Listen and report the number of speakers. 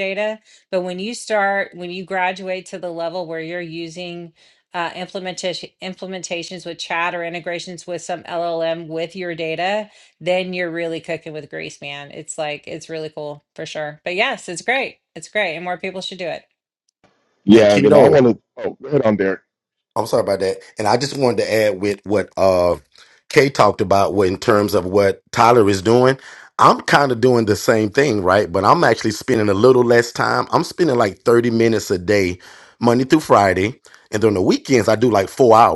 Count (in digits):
3